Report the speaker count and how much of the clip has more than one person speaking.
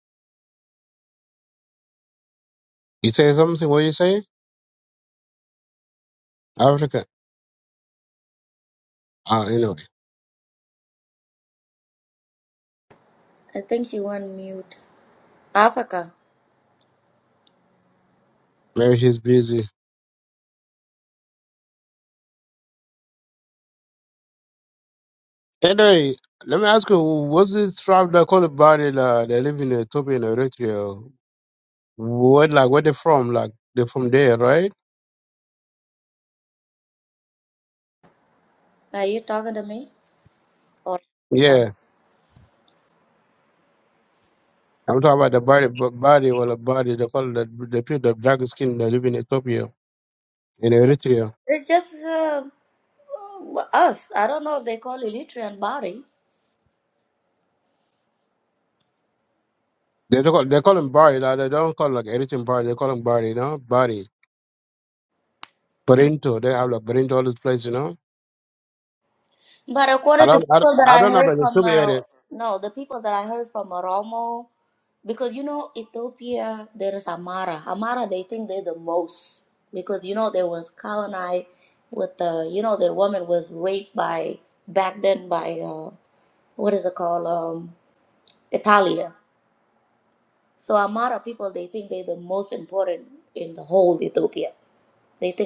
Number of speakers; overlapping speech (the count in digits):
2, about 2%